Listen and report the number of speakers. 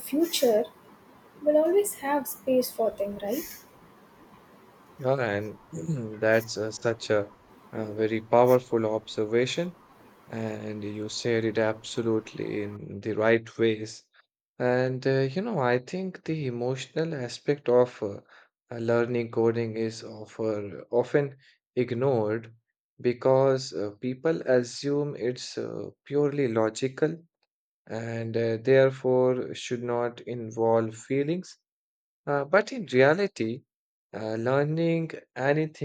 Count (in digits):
2